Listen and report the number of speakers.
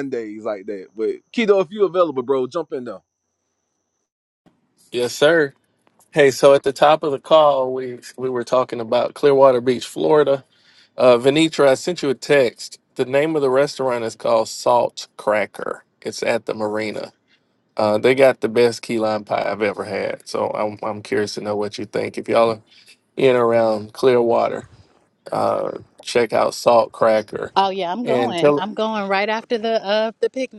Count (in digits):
3